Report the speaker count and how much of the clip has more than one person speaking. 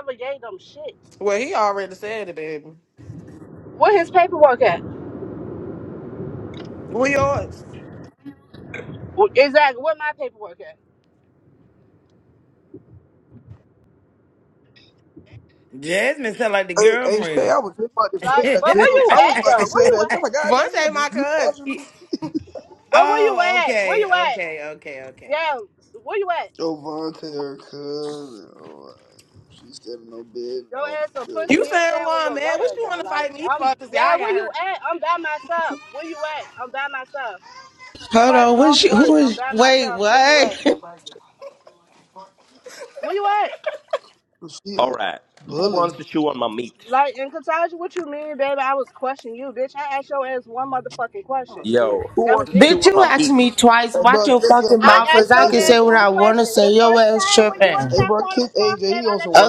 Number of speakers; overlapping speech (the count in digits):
6, about 32%